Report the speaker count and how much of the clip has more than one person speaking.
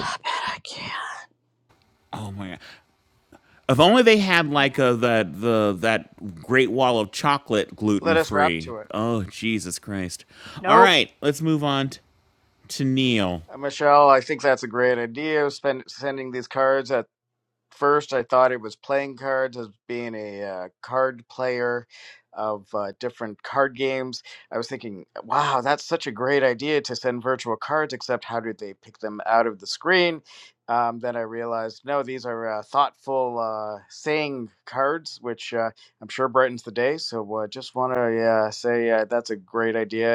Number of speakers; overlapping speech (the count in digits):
3, about 3%